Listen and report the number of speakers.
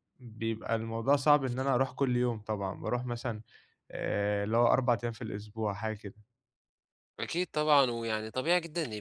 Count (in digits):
2